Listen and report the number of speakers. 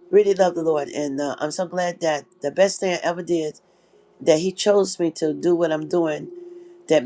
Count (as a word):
one